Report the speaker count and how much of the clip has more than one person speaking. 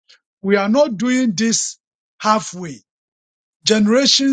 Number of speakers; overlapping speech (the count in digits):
1, no overlap